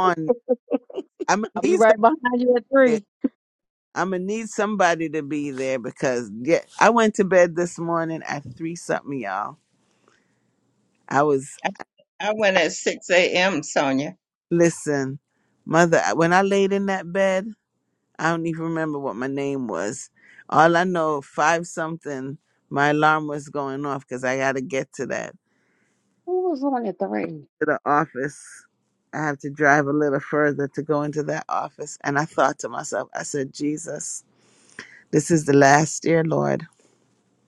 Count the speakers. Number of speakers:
4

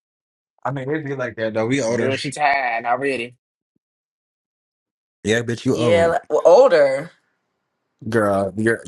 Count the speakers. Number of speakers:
3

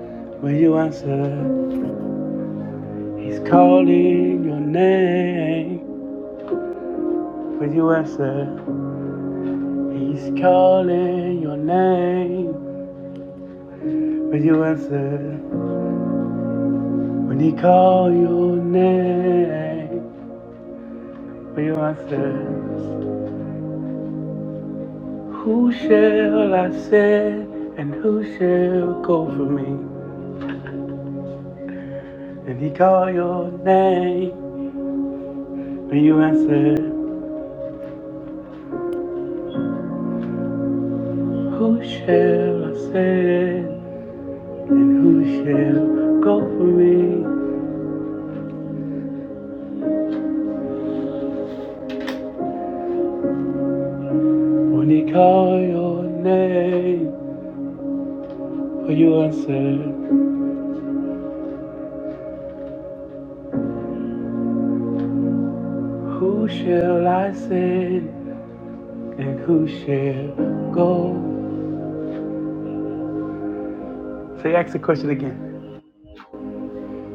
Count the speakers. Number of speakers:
1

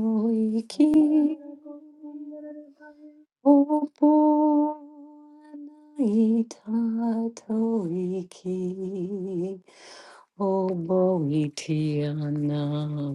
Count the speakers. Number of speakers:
2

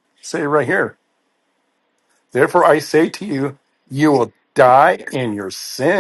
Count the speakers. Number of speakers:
1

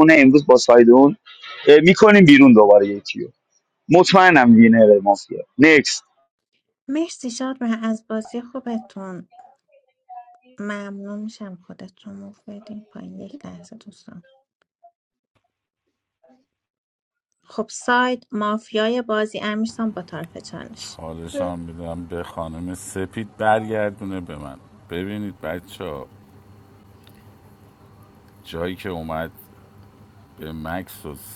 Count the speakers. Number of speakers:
3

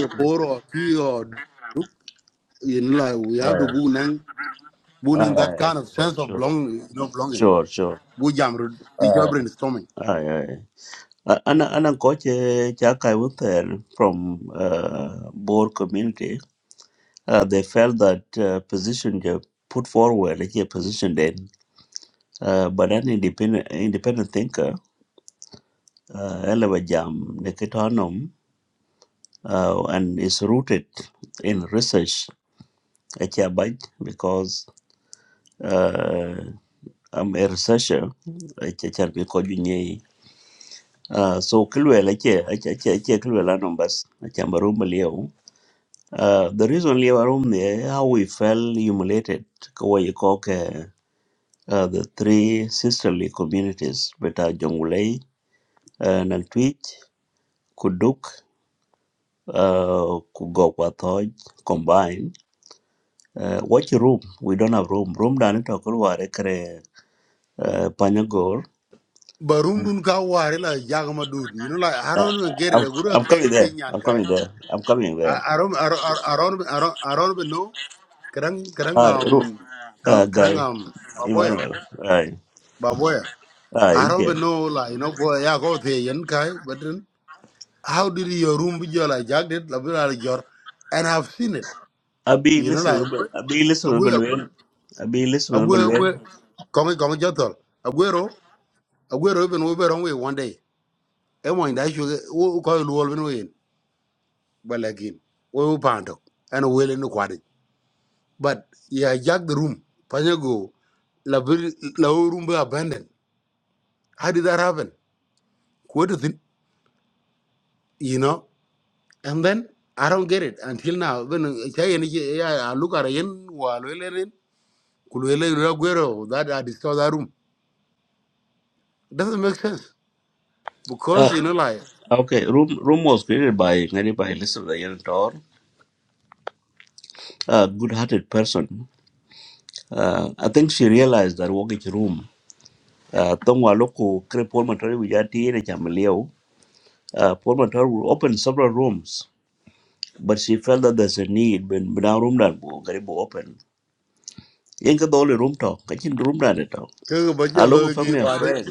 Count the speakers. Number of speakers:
2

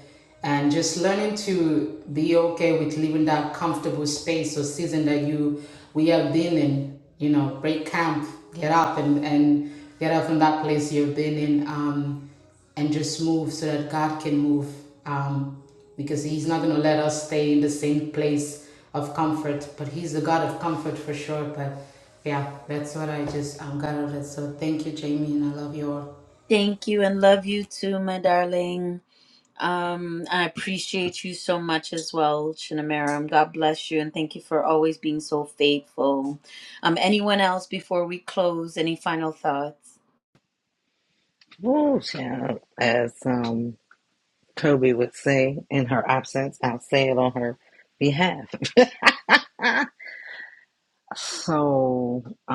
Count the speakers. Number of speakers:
3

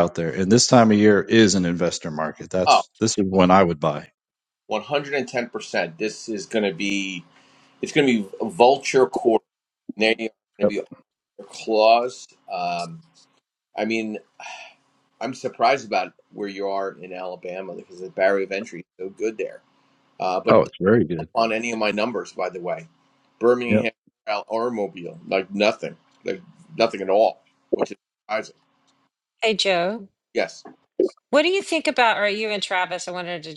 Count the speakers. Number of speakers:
3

